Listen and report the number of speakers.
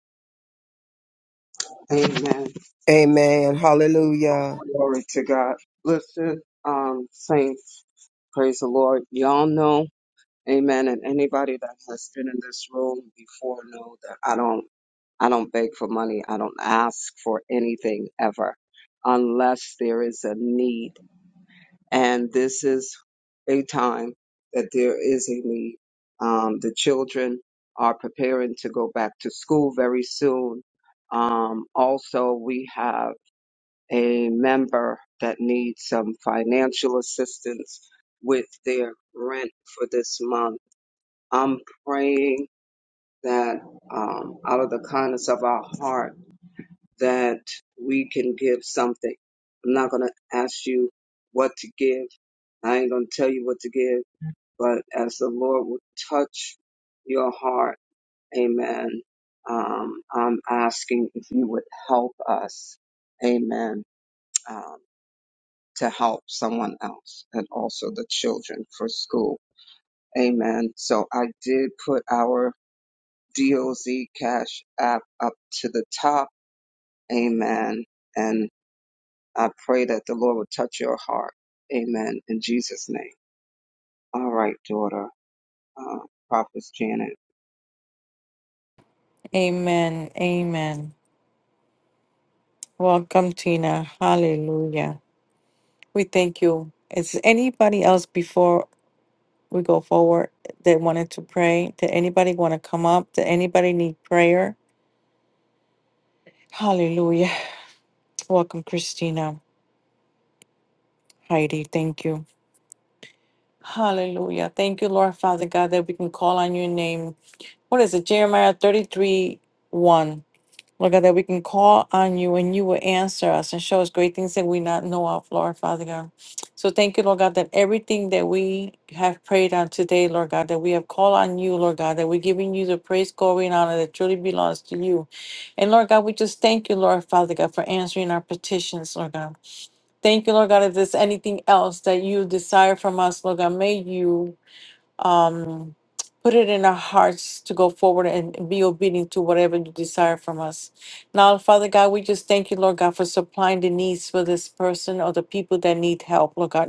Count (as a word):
three